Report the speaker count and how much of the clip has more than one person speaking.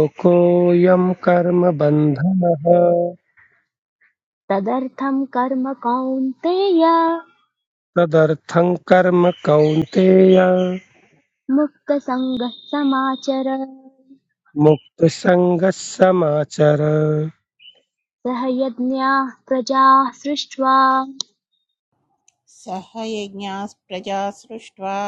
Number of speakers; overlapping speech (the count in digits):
3, no overlap